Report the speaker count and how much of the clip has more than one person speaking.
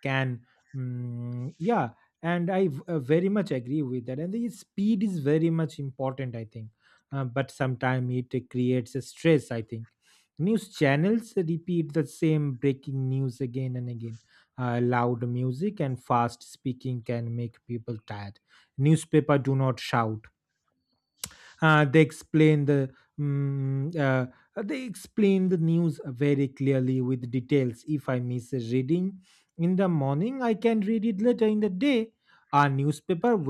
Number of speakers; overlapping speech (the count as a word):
one, no overlap